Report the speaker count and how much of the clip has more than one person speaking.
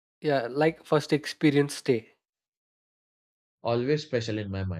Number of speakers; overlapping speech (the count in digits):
2, no overlap